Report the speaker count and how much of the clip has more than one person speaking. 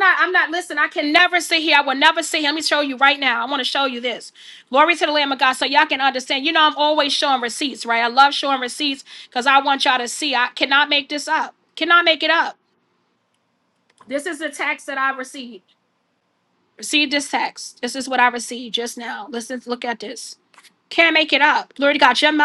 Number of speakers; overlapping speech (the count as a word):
one, no overlap